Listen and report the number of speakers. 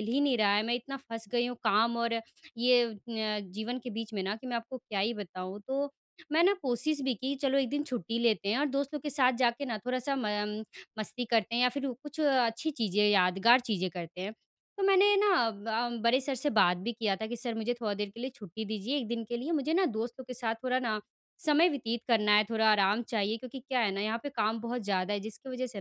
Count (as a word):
one